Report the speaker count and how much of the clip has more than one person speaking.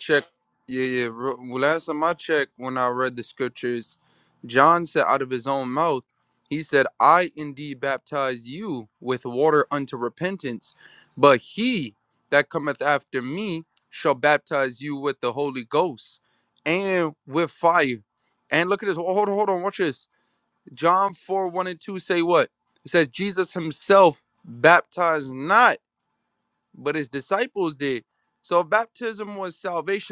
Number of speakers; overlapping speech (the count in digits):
1, no overlap